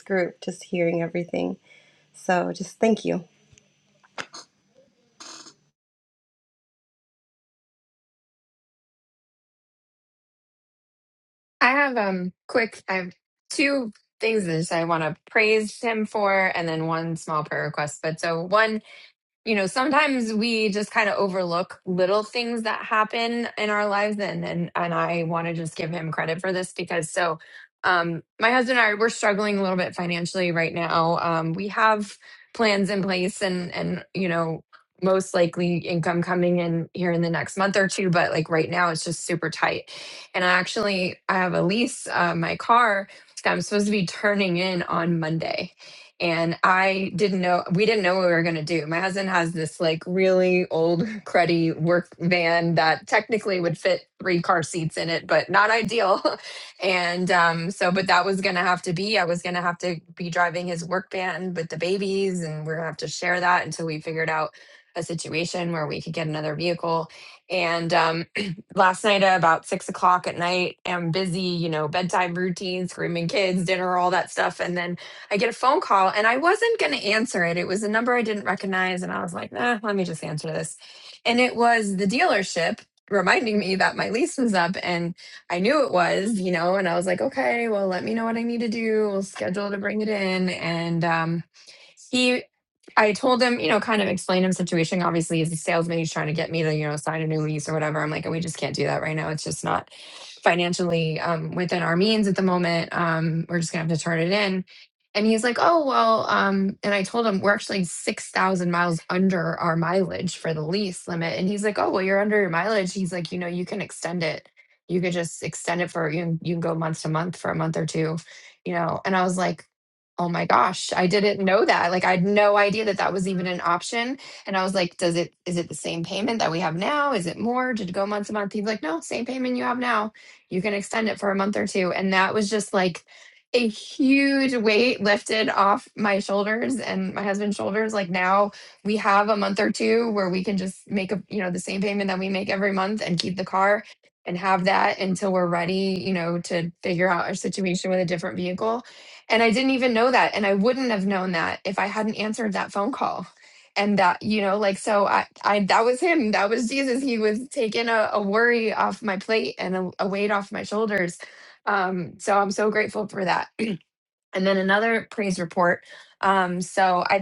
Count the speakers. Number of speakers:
2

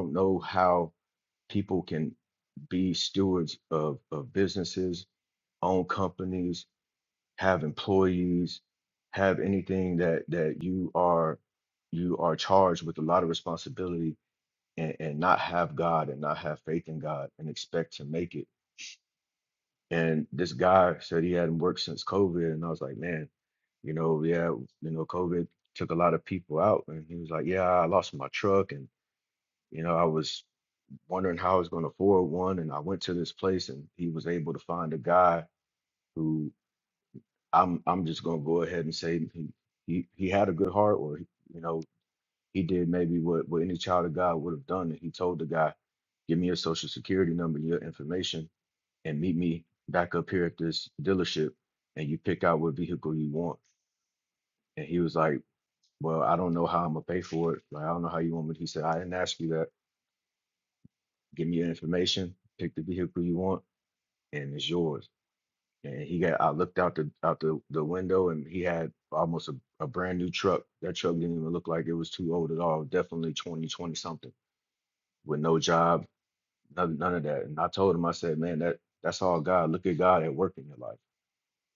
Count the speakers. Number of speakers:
1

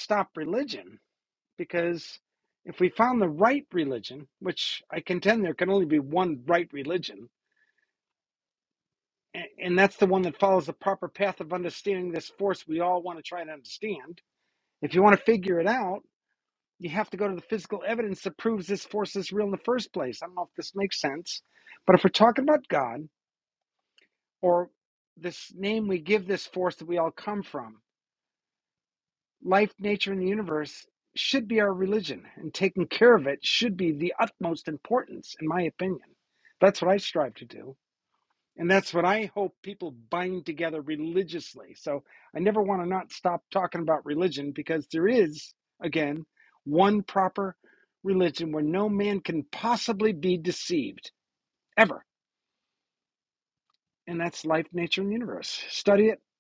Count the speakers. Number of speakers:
1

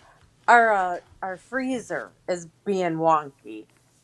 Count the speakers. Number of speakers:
1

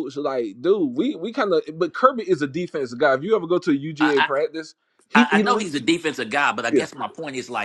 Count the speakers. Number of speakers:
2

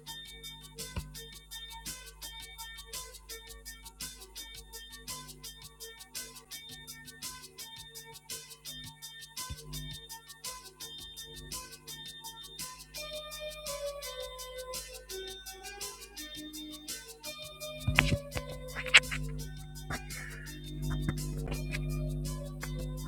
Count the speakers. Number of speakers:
0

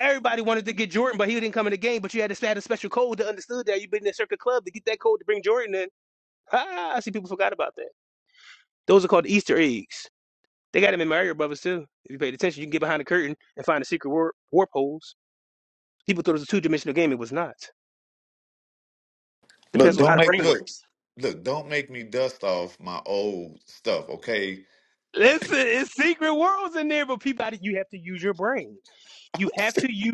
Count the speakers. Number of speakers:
2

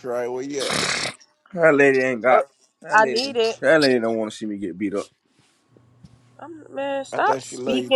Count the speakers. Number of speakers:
3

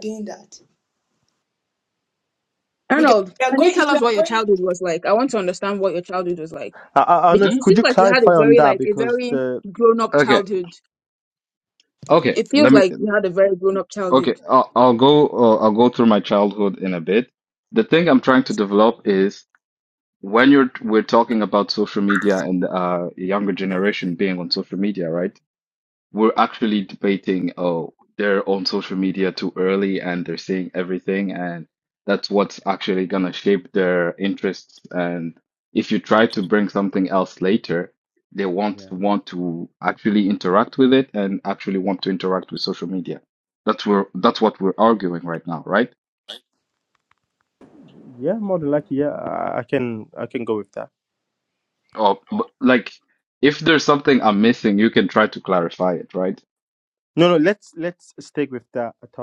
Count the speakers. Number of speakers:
4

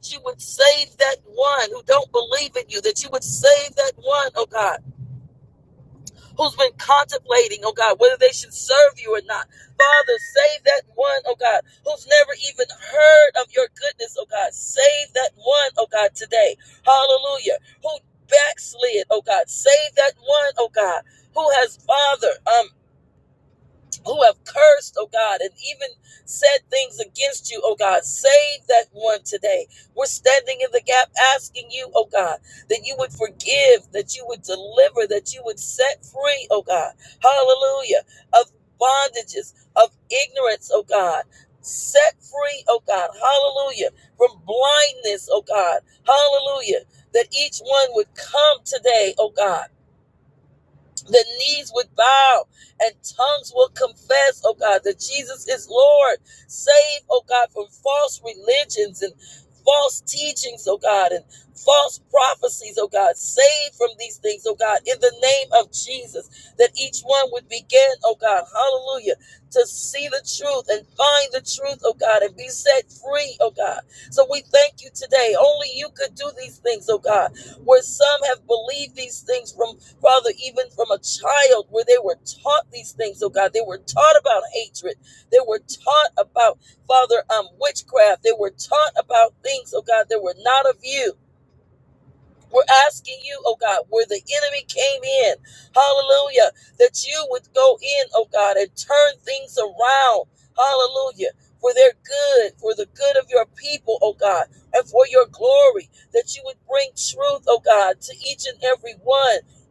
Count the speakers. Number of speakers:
1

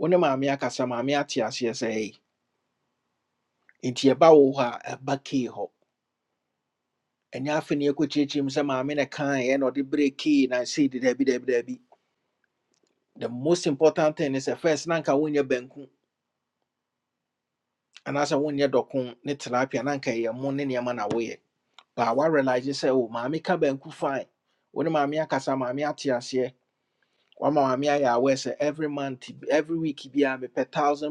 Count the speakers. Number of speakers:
1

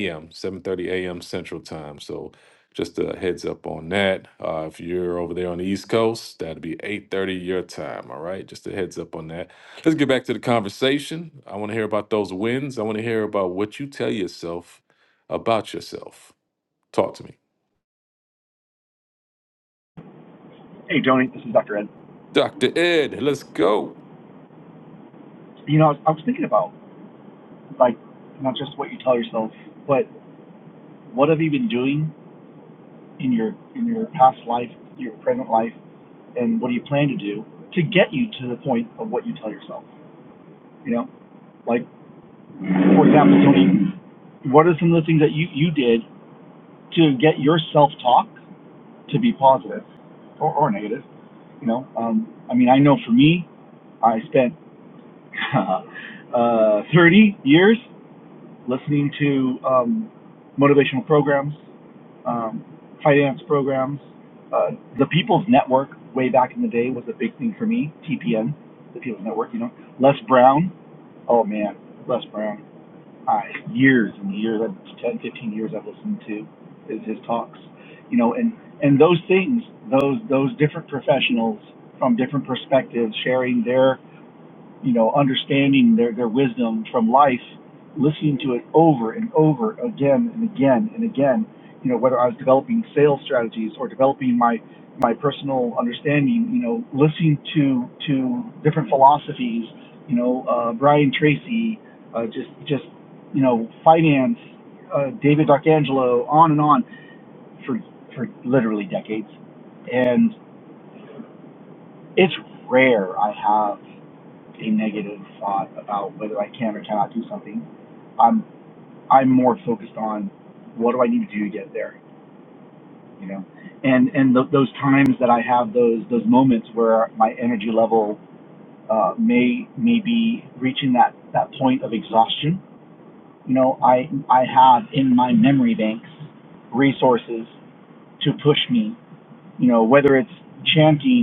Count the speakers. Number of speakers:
2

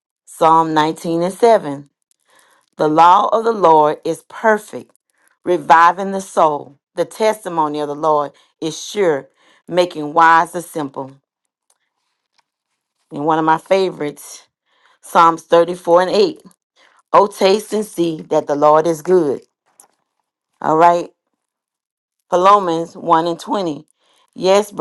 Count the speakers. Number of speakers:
1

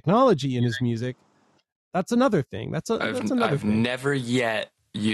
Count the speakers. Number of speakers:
2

